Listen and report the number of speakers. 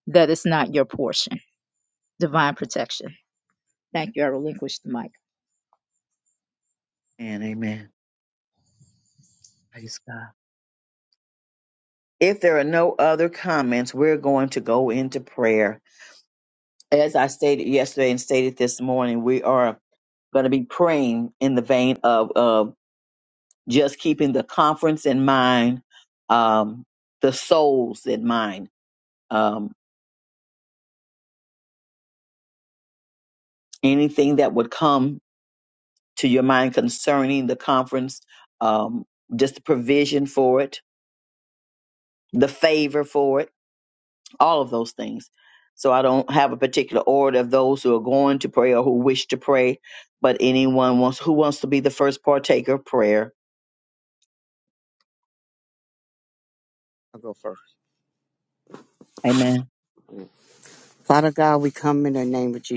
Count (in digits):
3